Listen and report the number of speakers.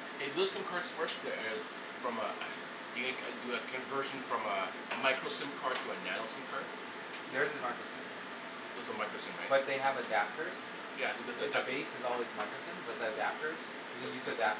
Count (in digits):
2